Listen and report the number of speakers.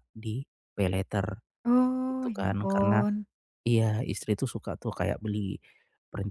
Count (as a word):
two